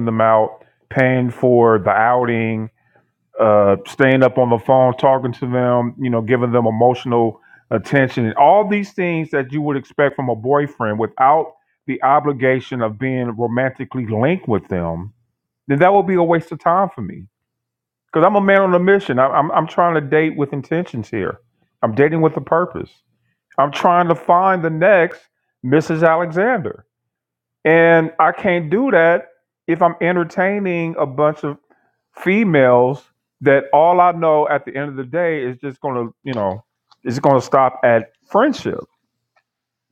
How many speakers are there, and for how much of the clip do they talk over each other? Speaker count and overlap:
1, no overlap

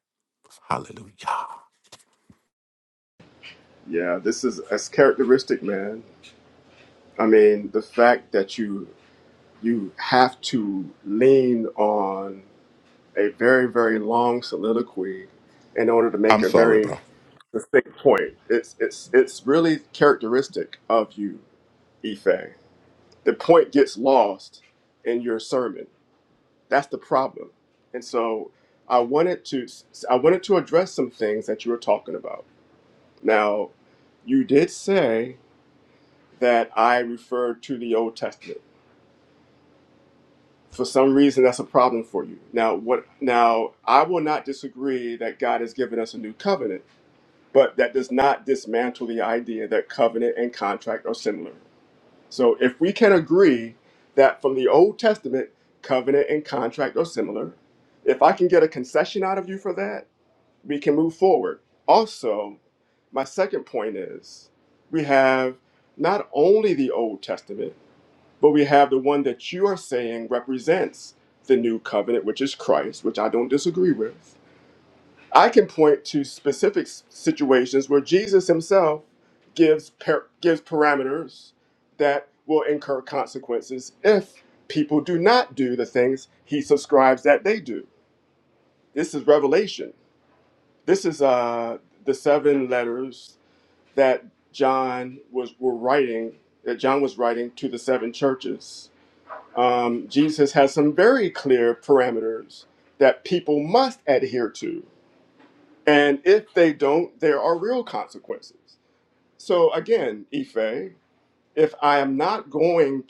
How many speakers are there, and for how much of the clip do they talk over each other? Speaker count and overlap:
2, about 1%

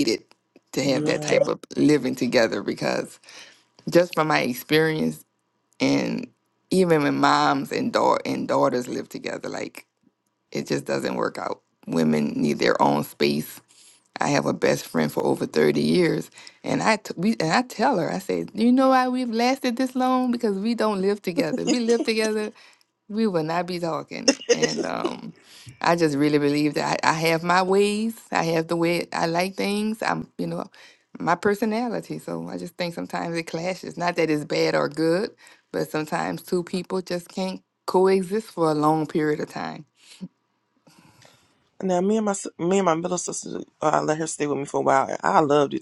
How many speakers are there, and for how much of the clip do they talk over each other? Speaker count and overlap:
2, about 1%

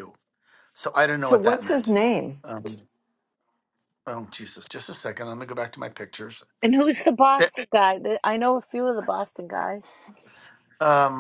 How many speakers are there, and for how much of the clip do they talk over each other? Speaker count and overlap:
3, about 6%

